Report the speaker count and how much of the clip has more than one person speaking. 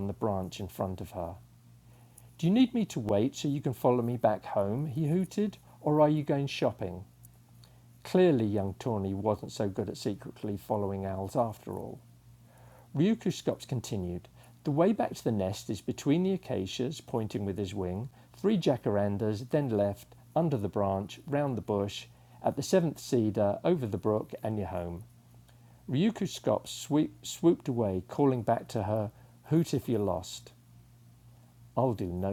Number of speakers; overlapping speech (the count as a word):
one, no overlap